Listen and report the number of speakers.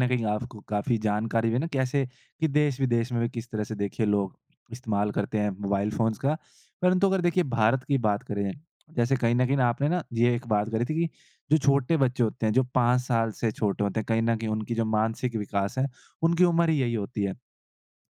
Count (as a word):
one